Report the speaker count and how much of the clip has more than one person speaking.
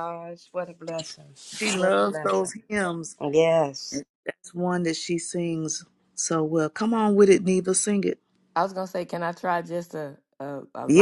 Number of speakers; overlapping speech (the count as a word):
three, about 8%